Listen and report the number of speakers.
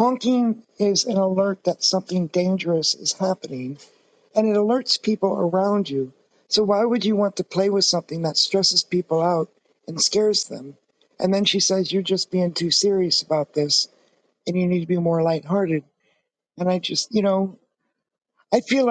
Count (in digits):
1